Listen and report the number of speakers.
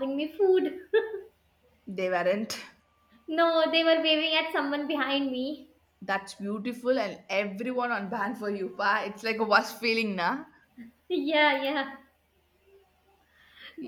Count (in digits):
2